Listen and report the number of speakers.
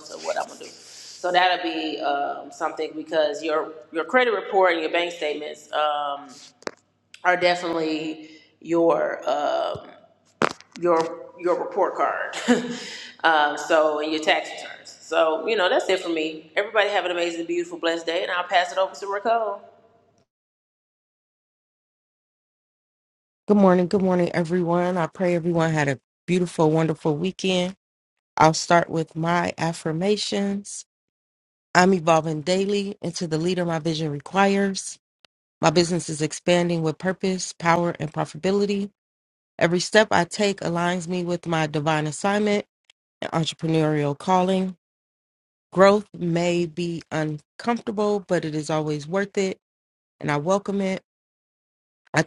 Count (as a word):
two